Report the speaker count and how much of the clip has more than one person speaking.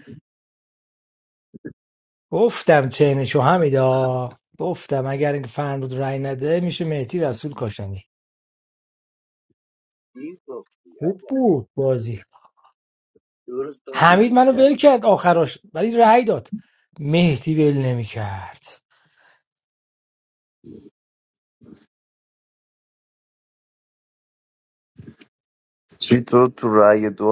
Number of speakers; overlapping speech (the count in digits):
3, about 4%